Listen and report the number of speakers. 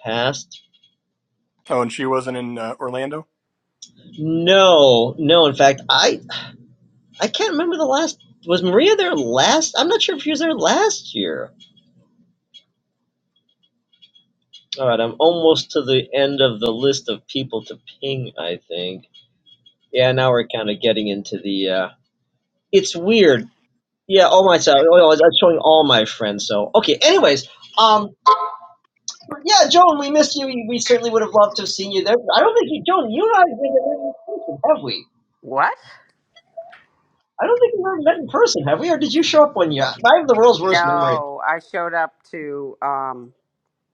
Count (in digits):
3